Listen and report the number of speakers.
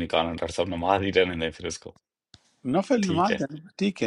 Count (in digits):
2